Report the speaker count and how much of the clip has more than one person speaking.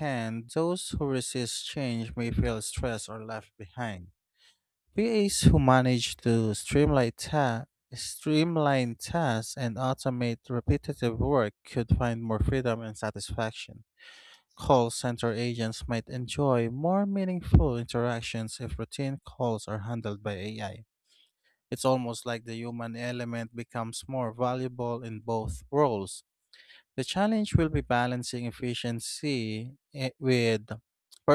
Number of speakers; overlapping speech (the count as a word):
one, no overlap